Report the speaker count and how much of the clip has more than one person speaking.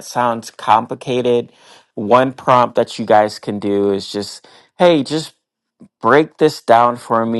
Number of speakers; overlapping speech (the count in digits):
1, no overlap